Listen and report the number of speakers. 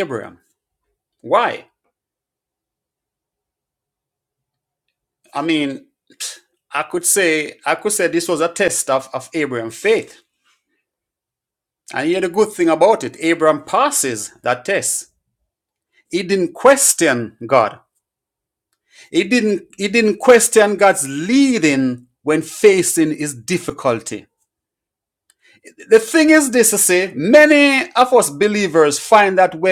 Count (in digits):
1